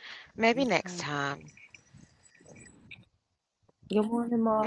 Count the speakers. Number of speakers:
two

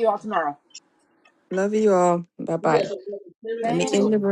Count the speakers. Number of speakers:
three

